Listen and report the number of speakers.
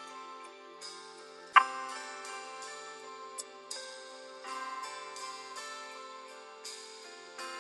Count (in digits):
0